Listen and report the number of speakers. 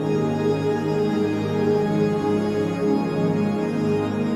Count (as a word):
zero